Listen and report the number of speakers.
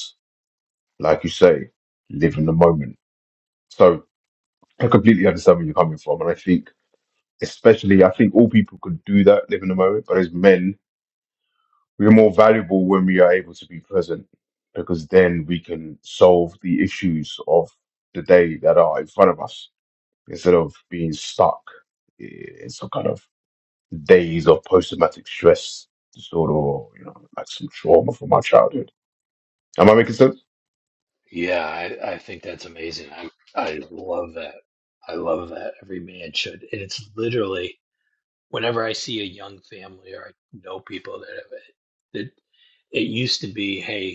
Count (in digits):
2